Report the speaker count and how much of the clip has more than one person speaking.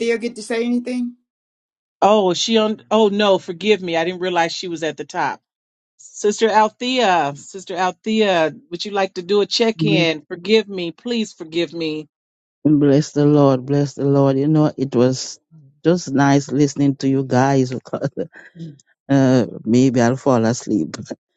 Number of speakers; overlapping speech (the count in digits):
3, about 1%